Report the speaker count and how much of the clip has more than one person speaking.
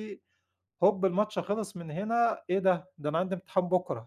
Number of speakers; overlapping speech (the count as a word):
one, no overlap